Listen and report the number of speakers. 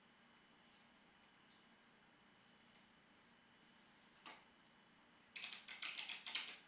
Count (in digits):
0